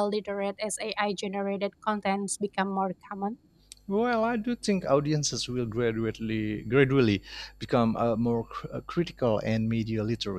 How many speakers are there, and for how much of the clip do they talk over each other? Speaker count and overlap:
two, no overlap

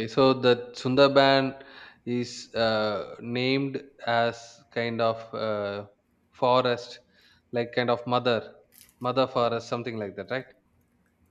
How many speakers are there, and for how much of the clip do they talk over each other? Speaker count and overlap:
one, no overlap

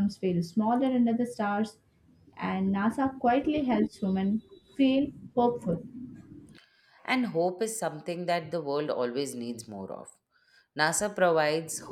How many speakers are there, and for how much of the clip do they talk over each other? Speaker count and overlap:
two, no overlap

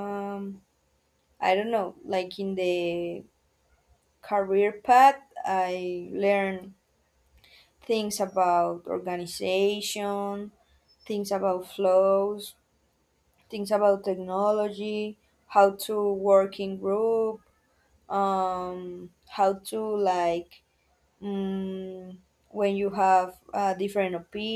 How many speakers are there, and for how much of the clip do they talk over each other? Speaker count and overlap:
one, no overlap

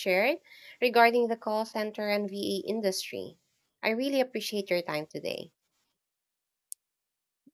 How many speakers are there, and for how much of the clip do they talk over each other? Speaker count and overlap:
one, no overlap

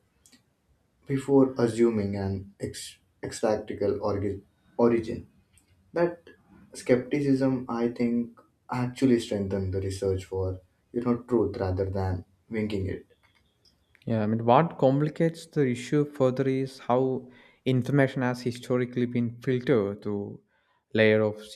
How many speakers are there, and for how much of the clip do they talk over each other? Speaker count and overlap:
two, no overlap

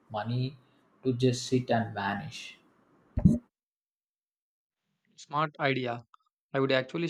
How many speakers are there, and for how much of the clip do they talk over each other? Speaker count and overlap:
two, no overlap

